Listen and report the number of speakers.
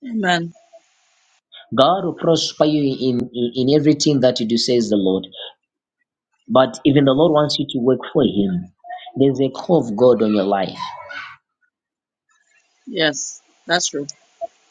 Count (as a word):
two